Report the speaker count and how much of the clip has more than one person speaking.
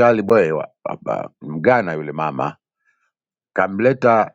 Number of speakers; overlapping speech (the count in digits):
1, no overlap